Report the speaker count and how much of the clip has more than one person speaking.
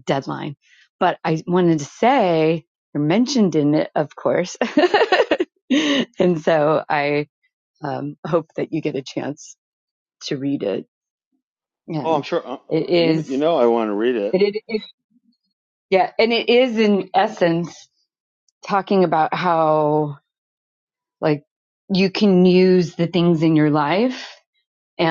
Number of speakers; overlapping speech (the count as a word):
two, about 3%